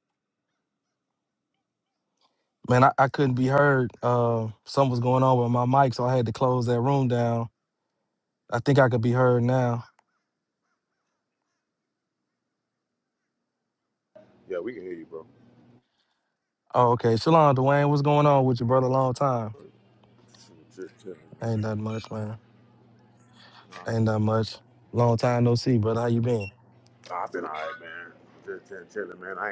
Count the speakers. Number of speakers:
2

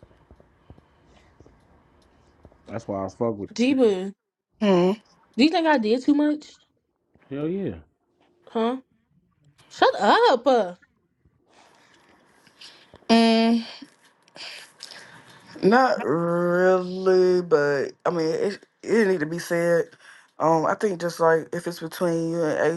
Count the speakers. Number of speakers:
3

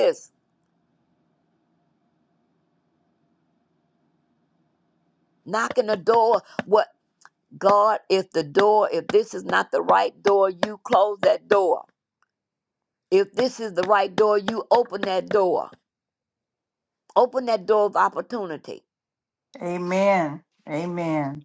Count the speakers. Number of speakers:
2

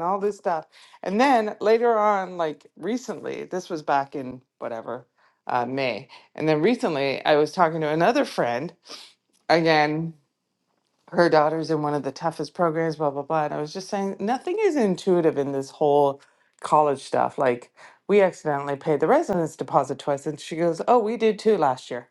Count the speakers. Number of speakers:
1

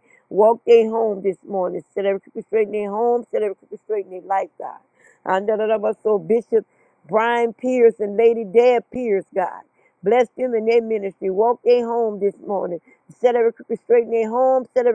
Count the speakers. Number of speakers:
1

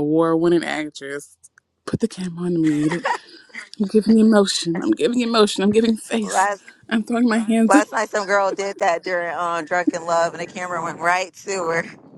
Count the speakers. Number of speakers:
2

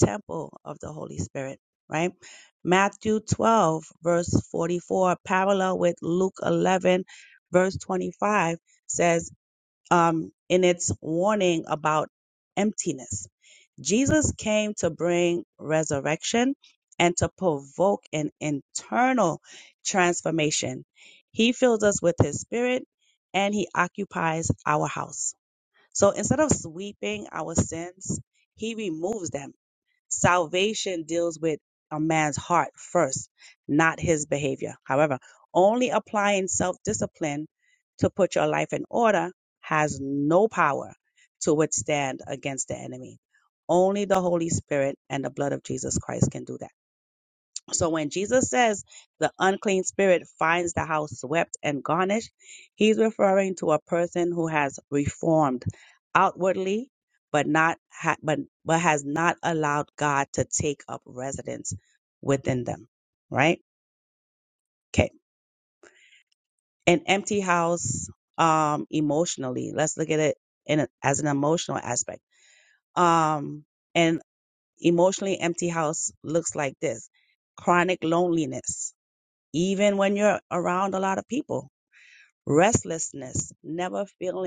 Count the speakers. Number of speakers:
1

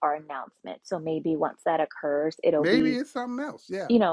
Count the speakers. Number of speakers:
2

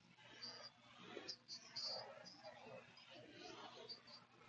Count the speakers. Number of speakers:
0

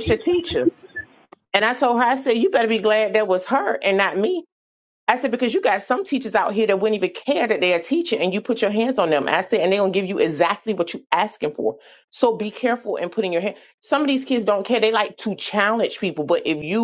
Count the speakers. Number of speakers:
1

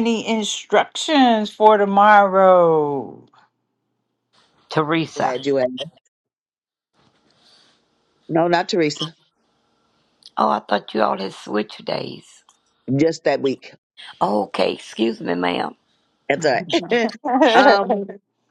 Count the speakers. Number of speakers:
3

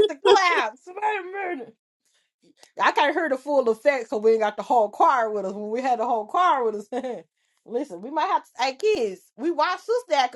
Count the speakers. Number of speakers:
1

